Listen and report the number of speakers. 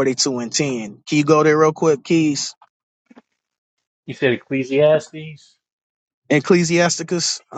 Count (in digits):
2